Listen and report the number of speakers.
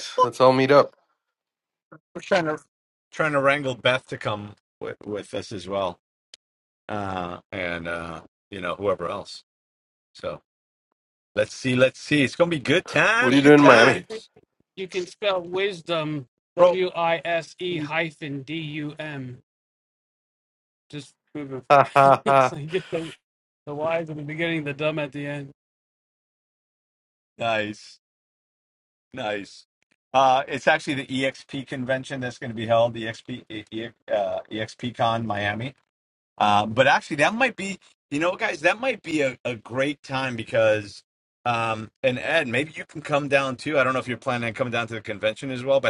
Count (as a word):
three